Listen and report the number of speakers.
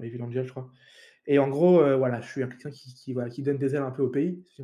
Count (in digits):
1